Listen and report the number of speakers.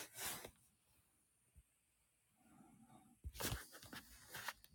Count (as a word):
zero